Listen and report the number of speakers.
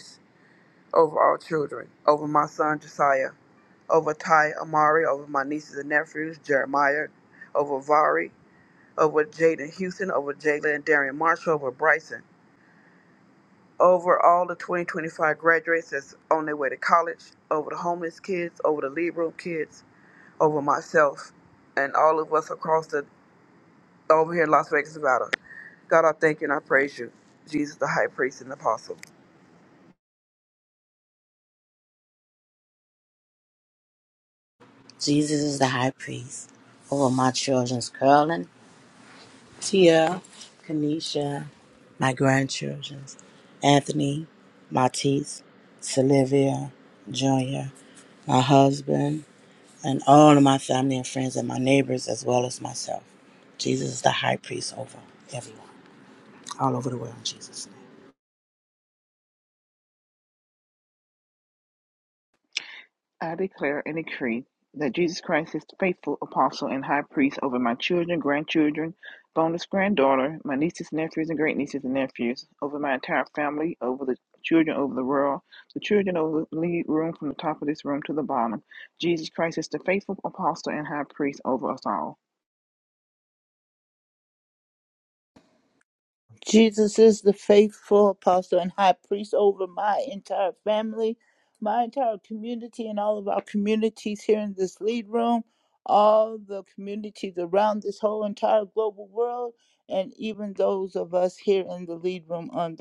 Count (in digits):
4